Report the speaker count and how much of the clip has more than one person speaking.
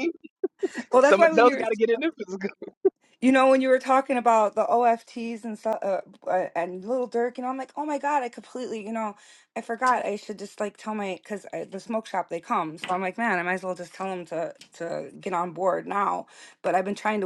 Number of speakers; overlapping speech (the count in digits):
2, about 3%